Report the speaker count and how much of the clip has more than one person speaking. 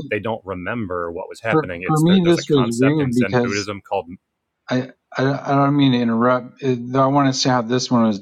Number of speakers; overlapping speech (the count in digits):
2, about 26%